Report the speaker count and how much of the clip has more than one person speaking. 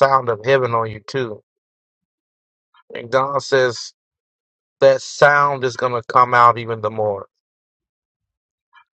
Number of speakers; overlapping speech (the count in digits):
1, no overlap